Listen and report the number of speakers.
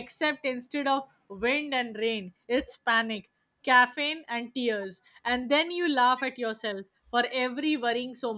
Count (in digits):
1